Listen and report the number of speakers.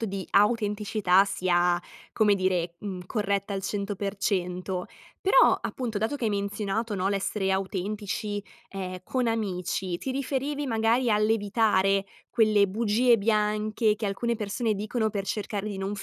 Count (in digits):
1